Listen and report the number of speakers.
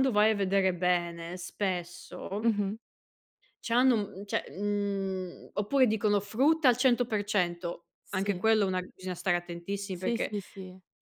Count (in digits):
2